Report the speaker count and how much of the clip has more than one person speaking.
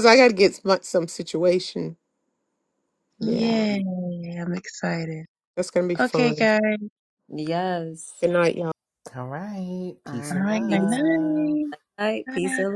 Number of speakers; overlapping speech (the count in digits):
4, about 21%